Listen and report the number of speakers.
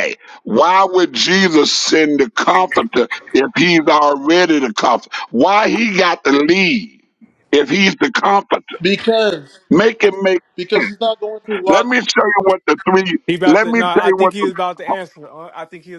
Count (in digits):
3